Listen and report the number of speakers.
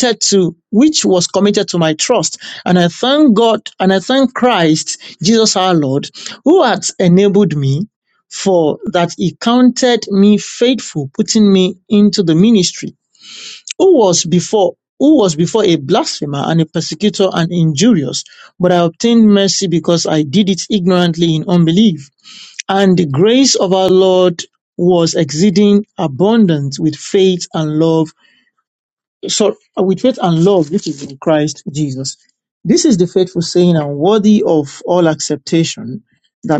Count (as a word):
one